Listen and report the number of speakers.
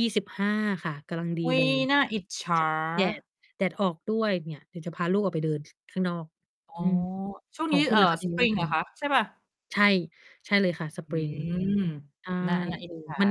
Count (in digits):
2